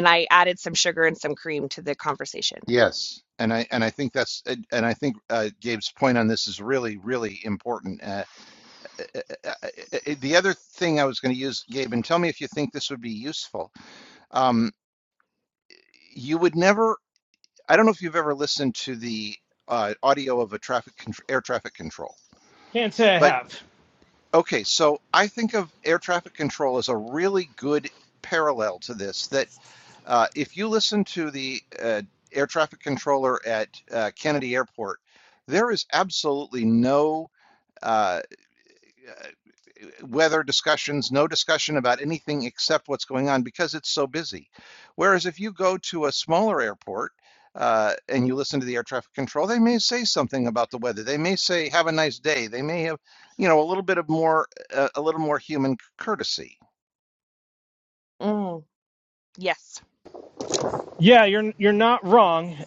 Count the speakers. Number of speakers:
3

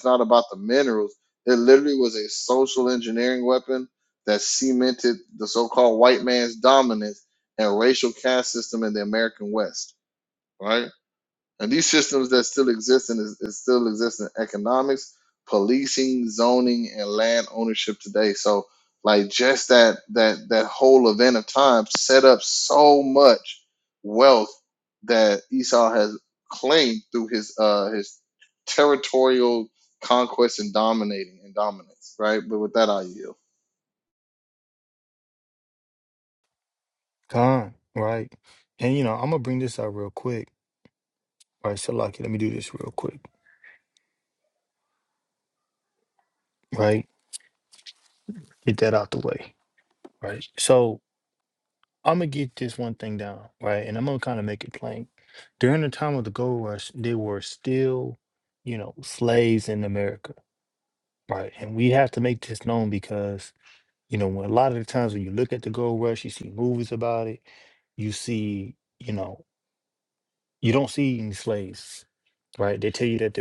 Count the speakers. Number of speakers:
2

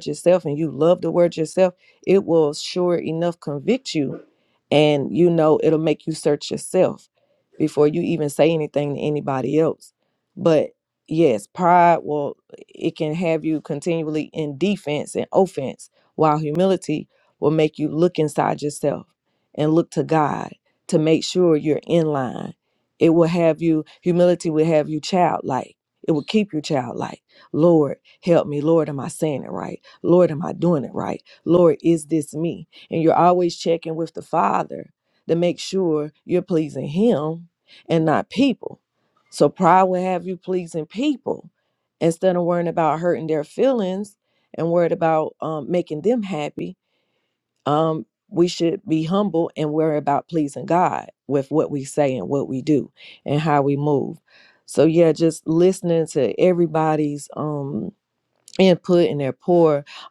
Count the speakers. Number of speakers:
1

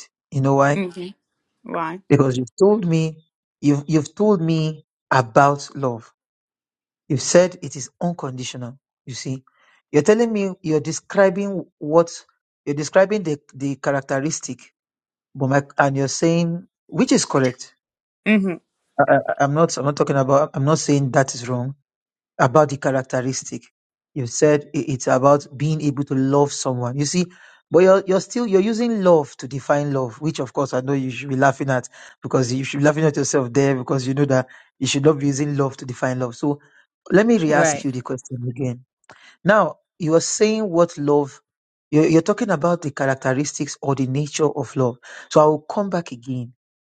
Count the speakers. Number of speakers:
2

